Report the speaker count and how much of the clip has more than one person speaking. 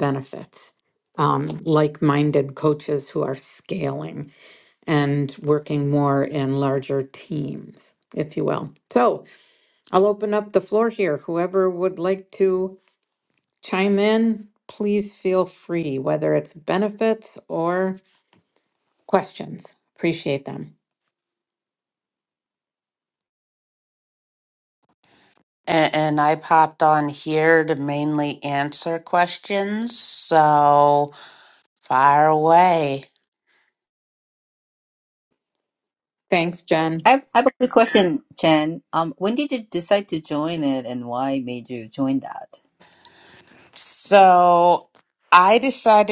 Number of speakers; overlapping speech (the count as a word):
three, under 1%